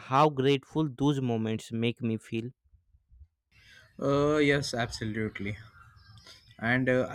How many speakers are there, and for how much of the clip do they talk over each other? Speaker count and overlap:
two, no overlap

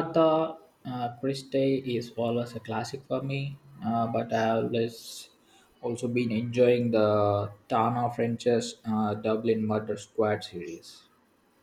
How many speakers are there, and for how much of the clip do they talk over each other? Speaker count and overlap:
one, no overlap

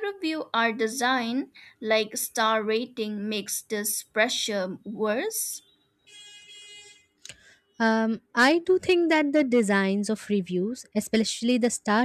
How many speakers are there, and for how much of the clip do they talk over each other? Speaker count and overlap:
two, no overlap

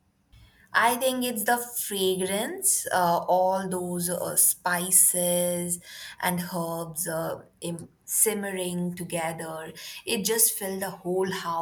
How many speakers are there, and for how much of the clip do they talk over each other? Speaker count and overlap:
one, no overlap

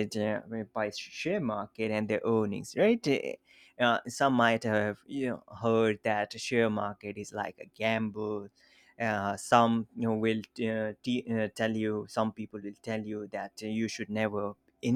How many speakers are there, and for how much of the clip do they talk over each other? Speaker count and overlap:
one, no overlap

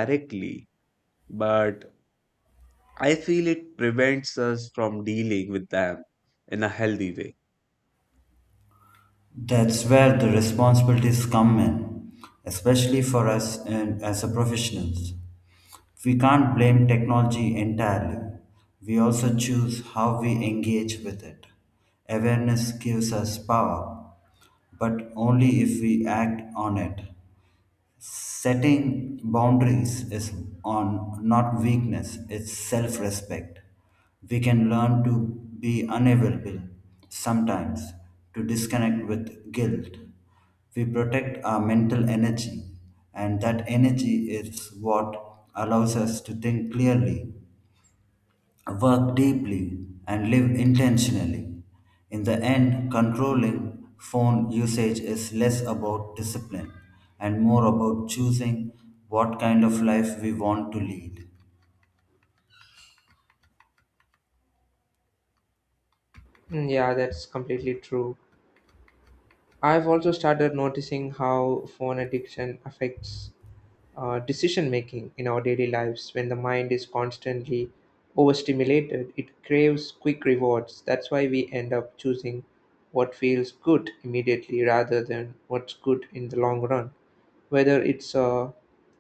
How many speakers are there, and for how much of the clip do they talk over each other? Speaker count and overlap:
three, no overlap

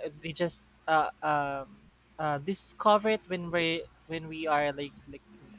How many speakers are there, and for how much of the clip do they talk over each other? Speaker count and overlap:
one, no overlap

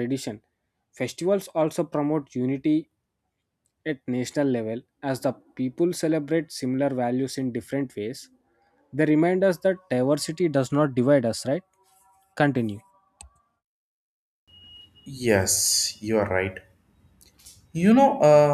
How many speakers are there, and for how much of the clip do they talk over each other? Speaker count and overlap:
two, no overlap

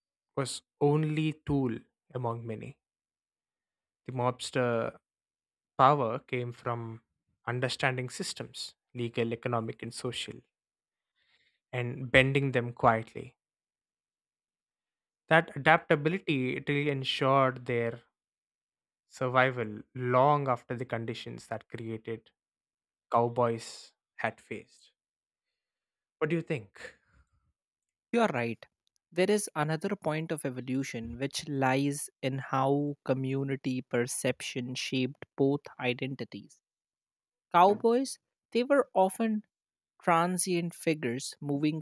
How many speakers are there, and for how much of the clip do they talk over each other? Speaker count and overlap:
two, no overlap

